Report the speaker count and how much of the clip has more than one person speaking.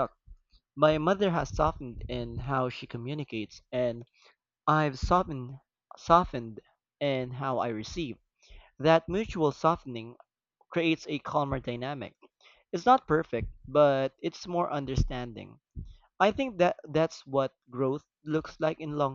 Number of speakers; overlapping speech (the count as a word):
one, no overlap